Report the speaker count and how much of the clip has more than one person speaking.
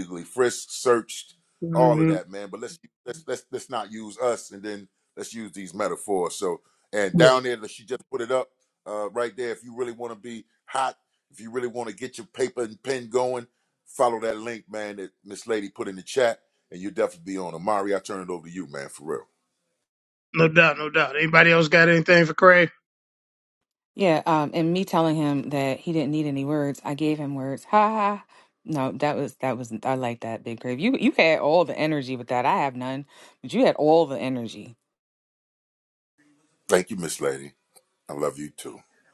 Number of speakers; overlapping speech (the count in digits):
3, about 1%